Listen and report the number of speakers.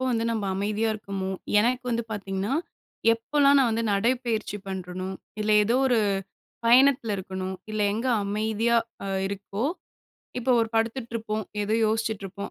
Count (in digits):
1